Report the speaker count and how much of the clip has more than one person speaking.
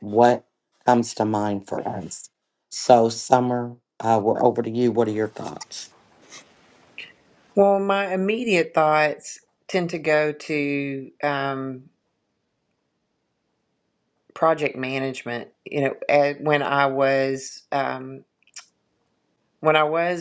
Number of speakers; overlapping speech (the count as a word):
two, no overlap